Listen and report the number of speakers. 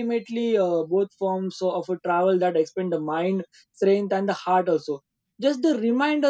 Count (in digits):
1